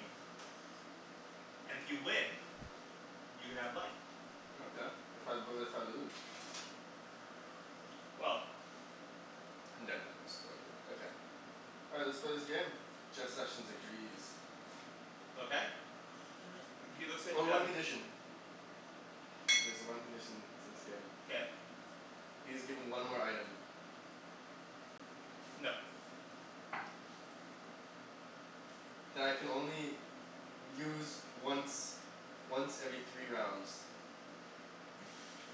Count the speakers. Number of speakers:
2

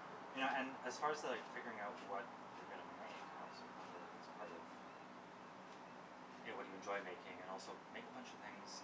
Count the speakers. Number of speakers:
1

